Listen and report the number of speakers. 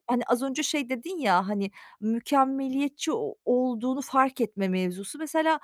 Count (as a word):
one